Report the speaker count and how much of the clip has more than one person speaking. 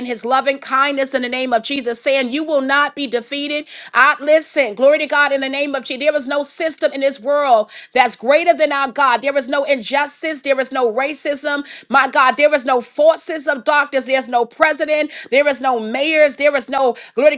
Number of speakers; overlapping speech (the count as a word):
one, no overlap